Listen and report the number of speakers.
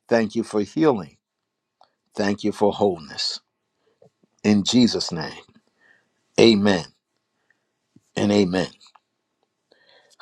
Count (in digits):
1